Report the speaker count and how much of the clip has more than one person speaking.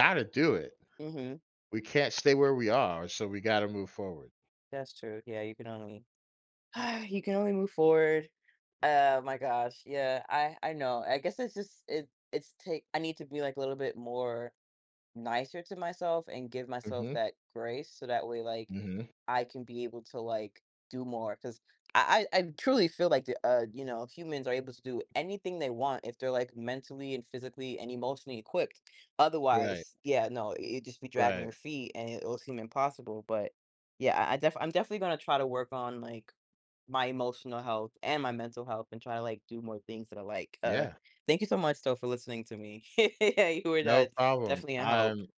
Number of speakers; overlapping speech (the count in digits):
2, about 5%